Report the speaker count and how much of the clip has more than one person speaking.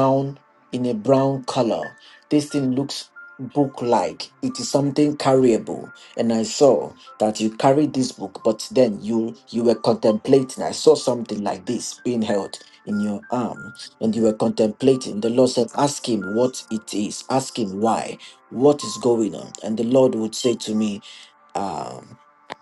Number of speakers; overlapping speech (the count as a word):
one, no overlap